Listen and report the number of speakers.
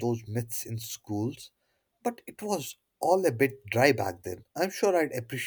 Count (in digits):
1